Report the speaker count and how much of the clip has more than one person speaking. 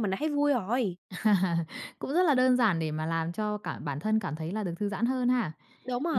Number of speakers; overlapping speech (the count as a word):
two, about 1%